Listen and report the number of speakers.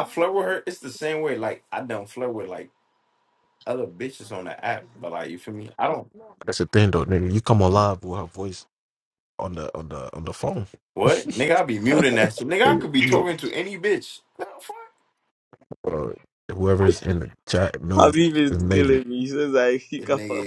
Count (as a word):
three